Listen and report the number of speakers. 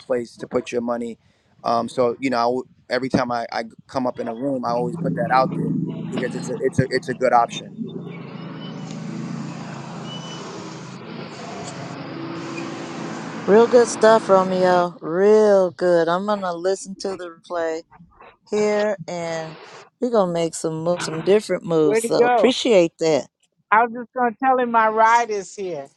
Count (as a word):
three